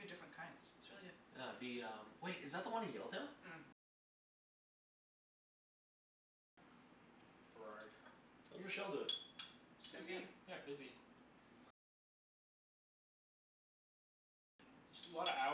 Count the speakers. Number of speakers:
three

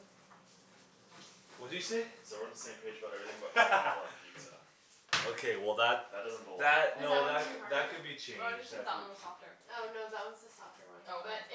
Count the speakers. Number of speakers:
four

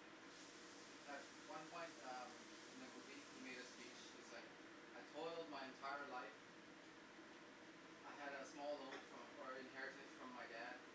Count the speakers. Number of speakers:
one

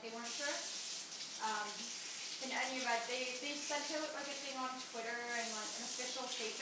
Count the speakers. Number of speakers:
one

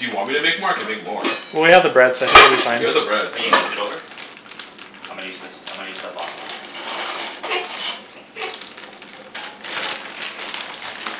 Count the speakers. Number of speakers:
three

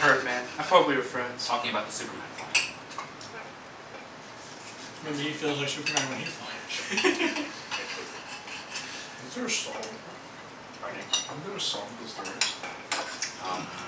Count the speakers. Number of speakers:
four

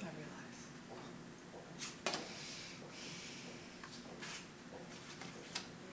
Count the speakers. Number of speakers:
zero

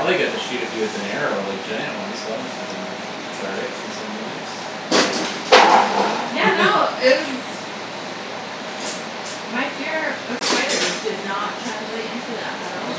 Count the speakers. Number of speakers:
two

